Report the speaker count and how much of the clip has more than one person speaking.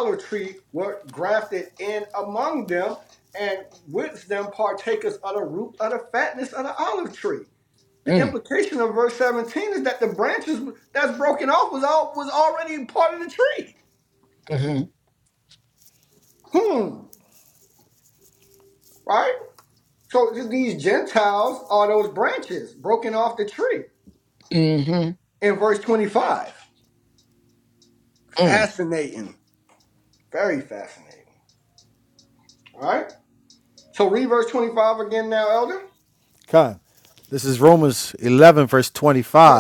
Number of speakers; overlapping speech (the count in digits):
3, about 2%